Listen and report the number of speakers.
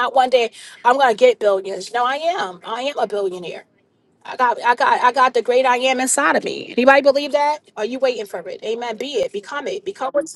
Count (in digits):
1